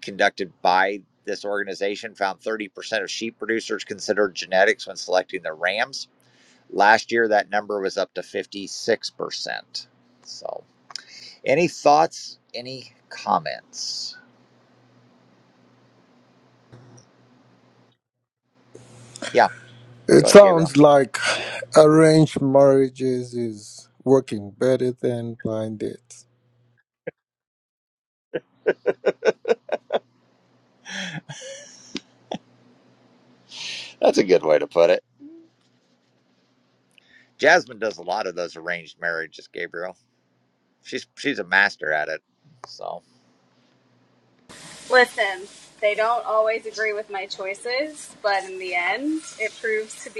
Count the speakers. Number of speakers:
three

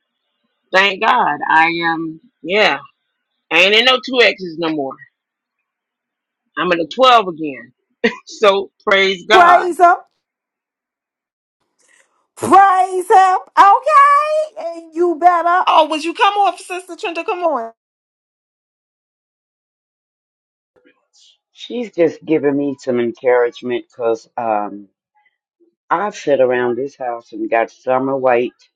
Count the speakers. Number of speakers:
three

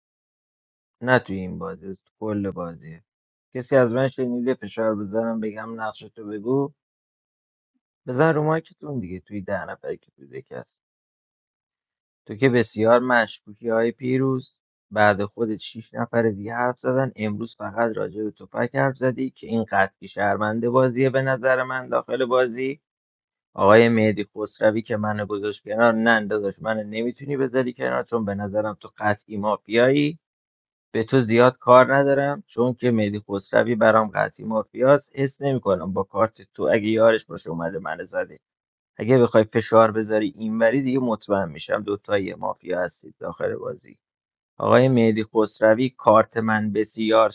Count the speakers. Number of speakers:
one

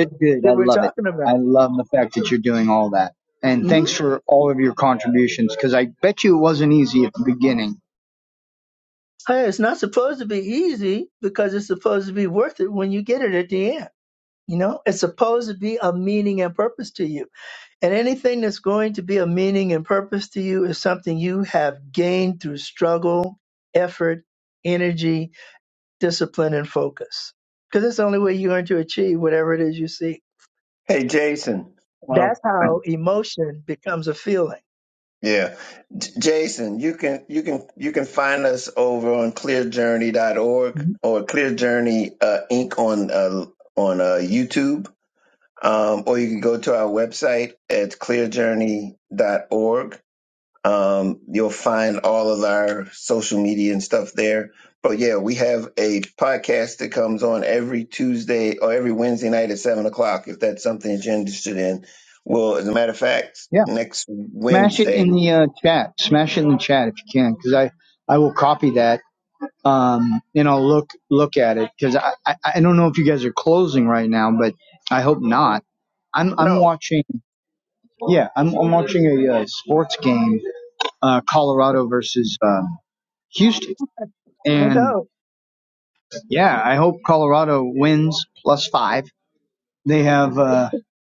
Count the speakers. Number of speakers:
three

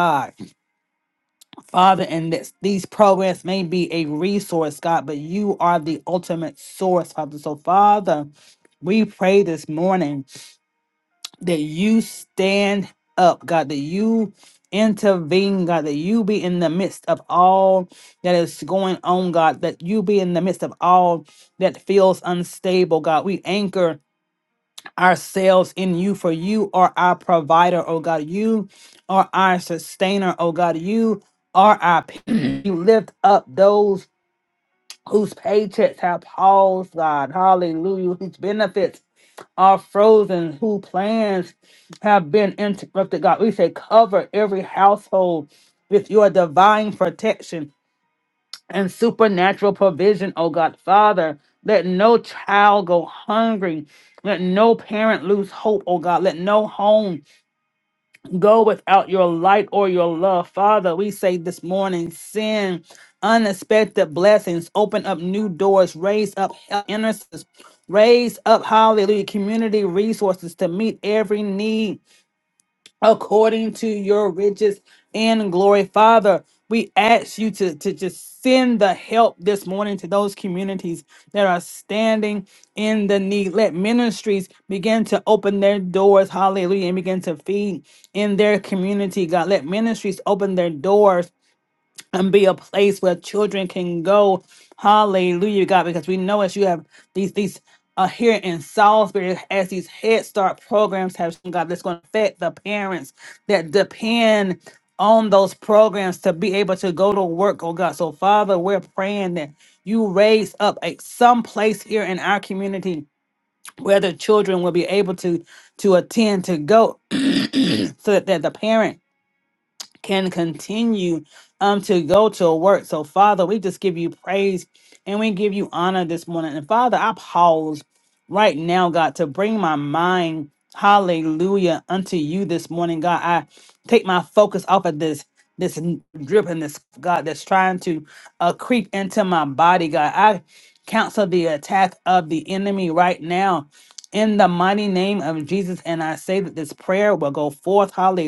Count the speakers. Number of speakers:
one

